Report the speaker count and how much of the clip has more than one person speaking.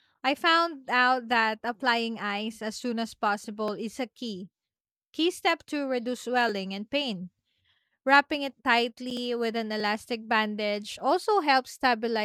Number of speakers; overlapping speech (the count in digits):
1, no overlap